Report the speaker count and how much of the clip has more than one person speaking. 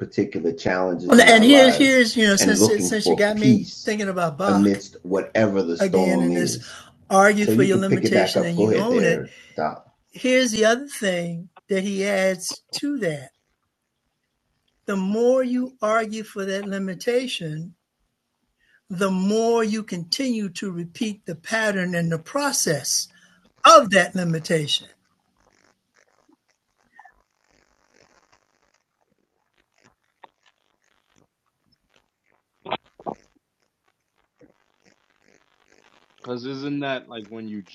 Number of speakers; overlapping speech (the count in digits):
3, about 13%